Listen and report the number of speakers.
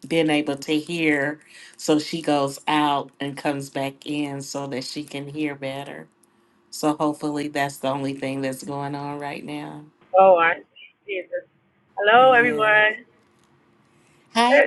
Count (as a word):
two